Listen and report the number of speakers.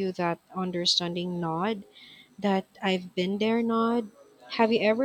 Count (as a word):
one